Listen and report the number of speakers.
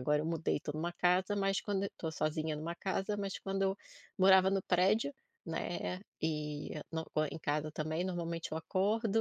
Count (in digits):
1